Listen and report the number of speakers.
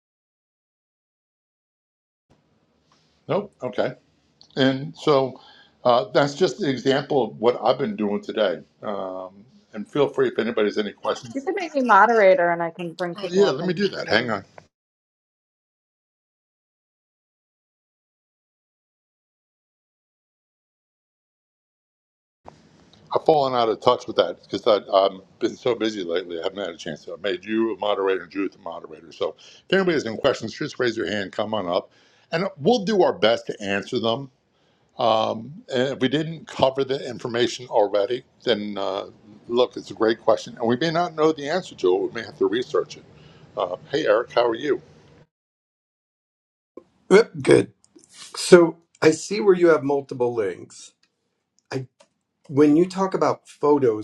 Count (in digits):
3